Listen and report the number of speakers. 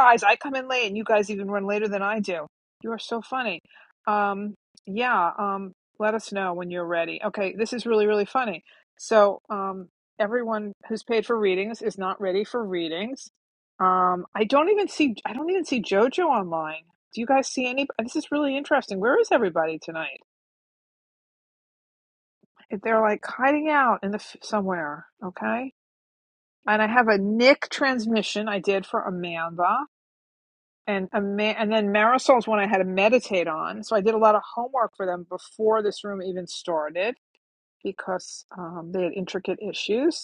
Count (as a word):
one